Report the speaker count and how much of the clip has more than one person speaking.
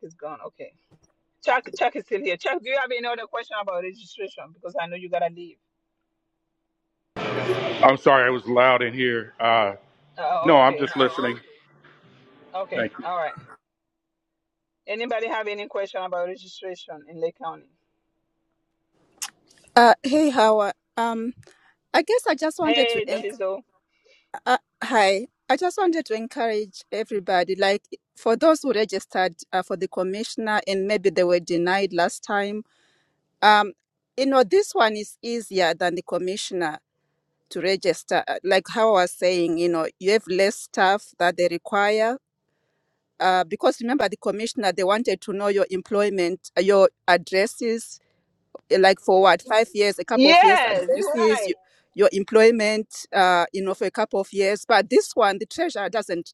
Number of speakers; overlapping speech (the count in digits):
3, about 5%